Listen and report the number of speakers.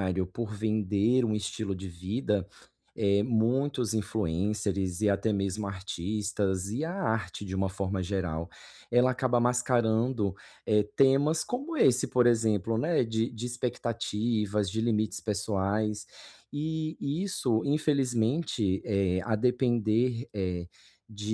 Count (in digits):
1